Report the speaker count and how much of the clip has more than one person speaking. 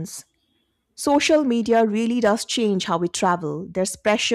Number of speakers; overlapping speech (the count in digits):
1, no overlap